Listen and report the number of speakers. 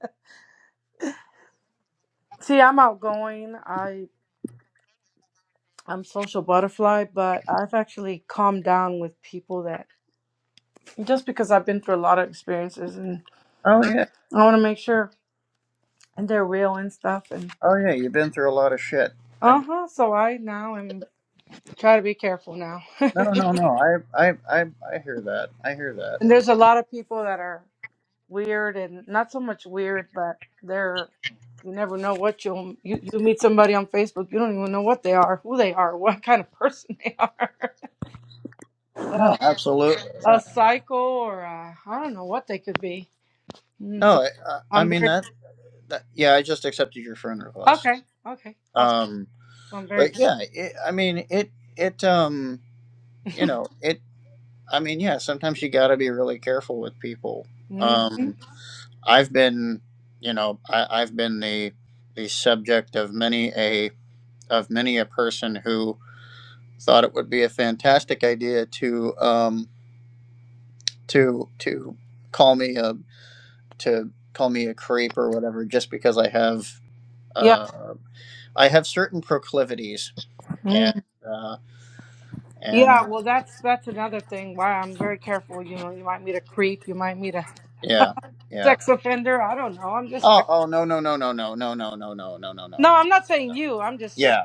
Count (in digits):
2